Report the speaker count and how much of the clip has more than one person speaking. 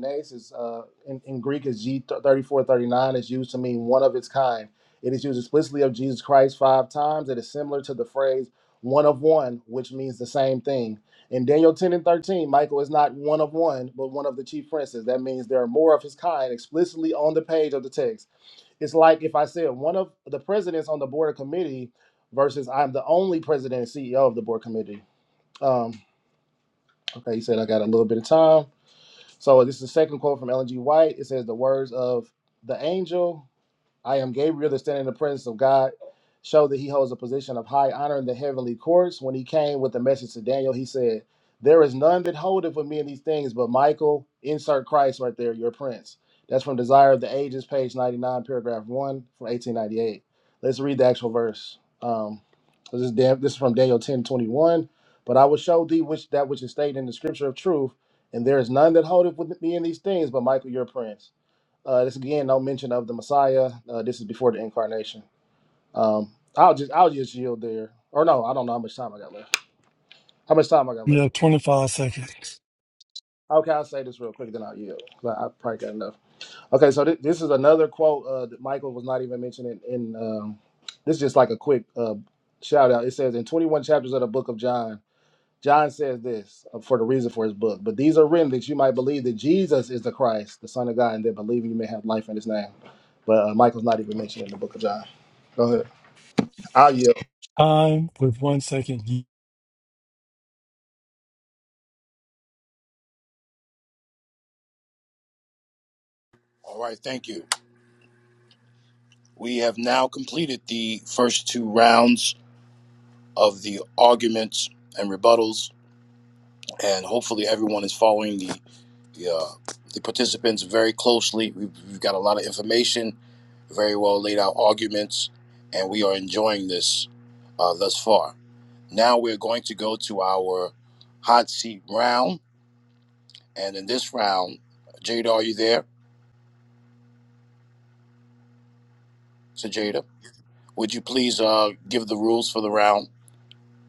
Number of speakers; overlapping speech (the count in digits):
3, under 1%